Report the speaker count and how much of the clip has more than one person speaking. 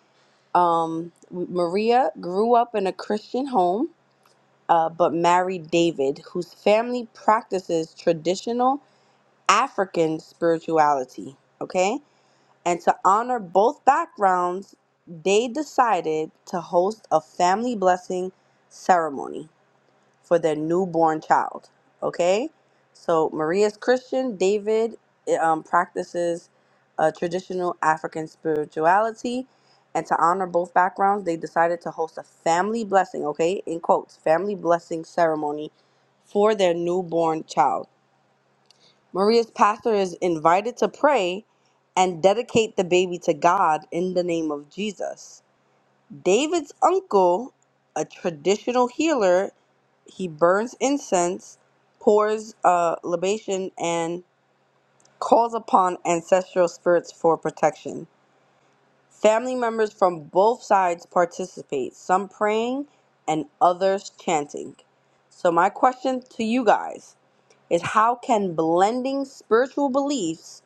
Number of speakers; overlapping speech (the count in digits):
1, no overlap